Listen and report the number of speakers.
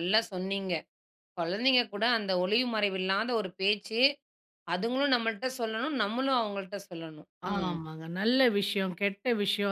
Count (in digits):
2